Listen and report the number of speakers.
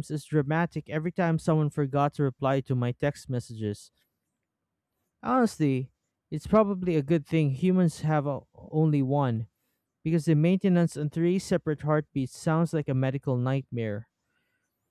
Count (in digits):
1